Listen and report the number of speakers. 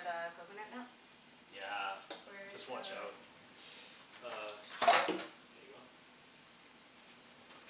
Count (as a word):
two